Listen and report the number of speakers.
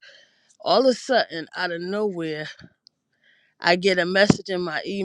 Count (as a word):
one